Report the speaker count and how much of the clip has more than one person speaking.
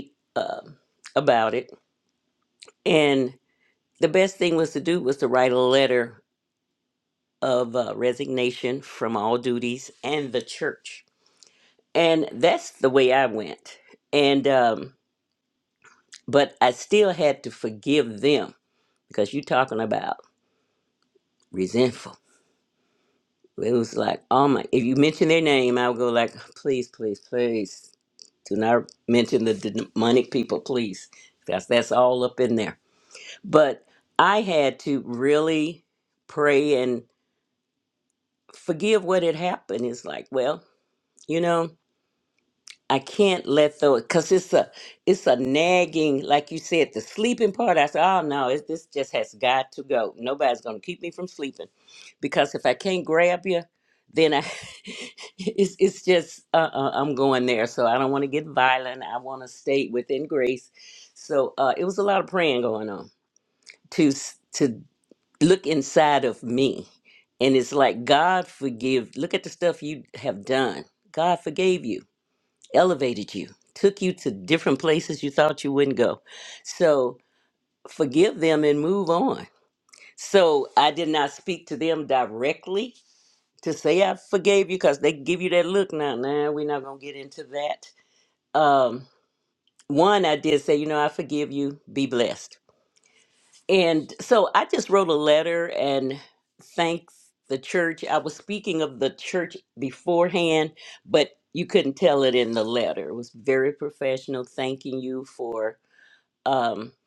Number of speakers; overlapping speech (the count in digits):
1, no overlap